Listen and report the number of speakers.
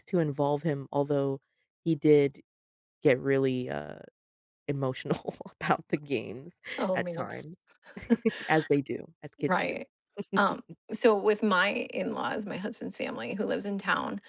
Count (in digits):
2